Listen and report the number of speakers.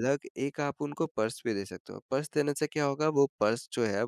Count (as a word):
one